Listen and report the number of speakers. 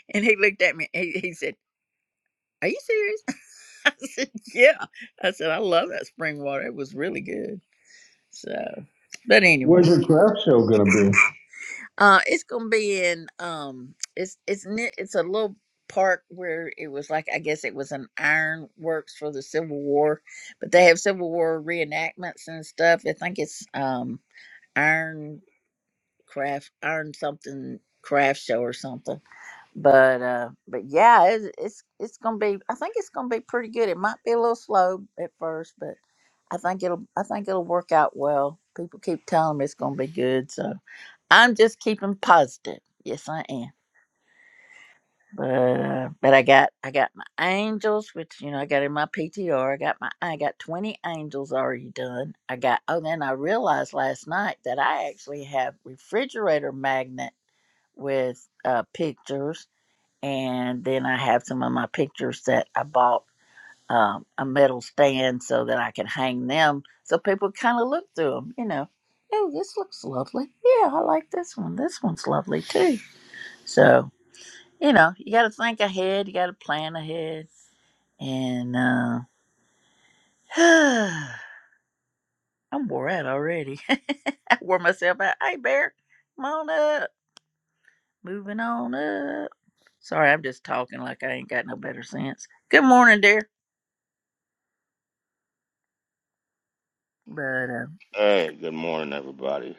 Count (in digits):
3